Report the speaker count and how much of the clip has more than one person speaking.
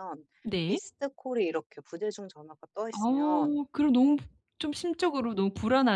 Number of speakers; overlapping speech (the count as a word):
two, about 12%